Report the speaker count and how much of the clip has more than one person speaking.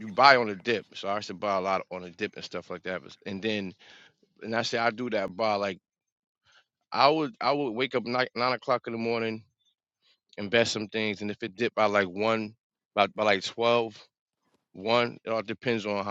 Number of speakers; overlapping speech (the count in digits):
1, no overlap